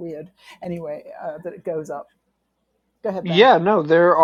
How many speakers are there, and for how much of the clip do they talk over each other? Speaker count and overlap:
two, about 6%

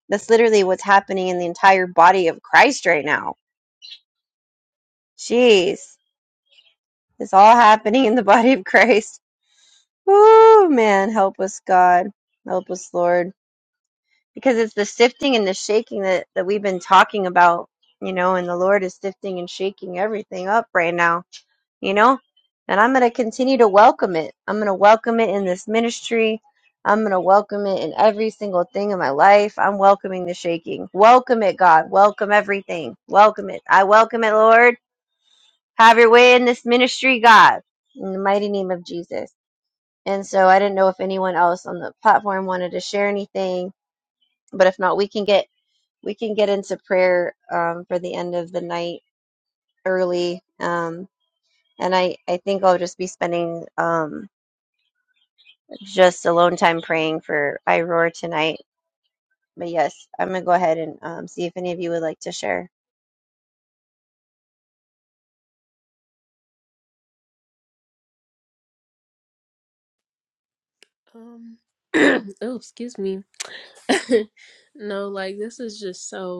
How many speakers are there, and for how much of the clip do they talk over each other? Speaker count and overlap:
two, no overlap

